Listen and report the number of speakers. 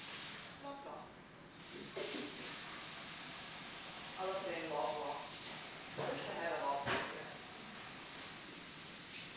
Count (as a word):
one